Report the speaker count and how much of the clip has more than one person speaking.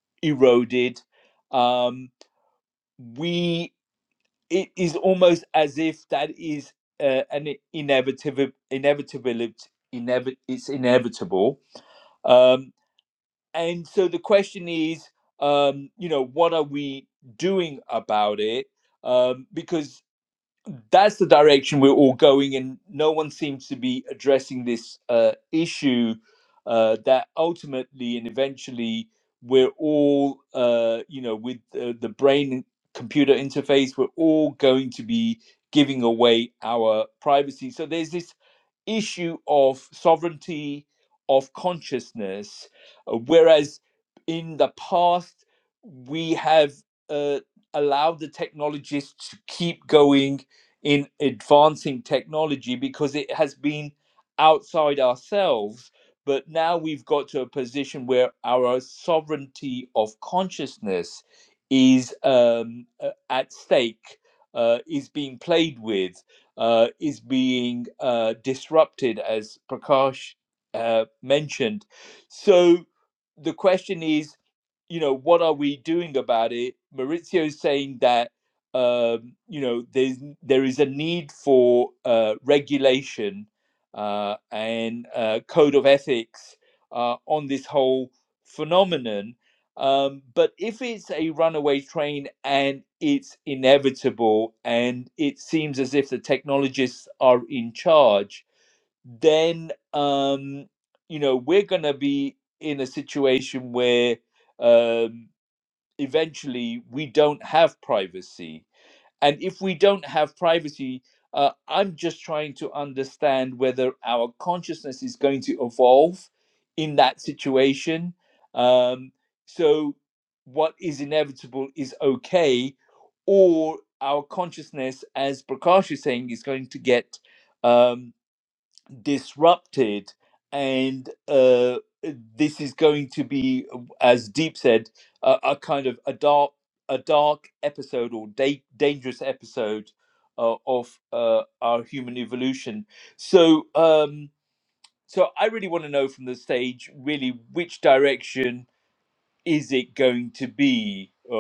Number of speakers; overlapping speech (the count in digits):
1, no overlap